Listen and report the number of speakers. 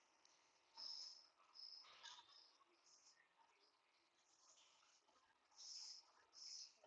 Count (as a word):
zero